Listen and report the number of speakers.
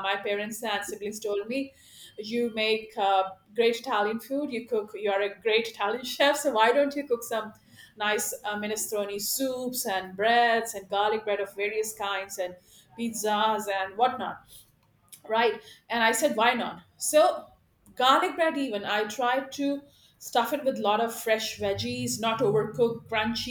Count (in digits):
1